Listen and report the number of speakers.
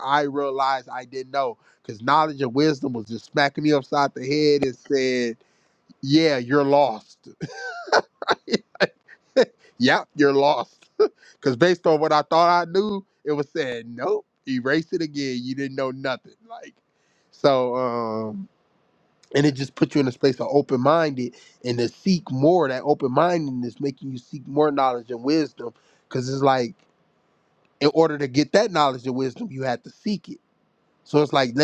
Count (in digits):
1